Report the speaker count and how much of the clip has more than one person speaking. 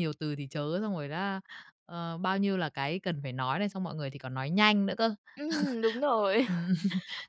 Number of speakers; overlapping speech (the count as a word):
two, about 1%